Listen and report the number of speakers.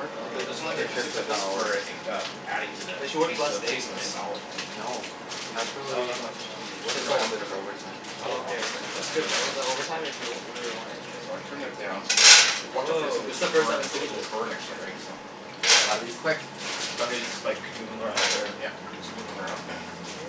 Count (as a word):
four